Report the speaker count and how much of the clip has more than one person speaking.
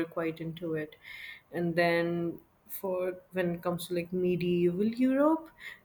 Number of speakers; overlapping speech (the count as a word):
one, no overlap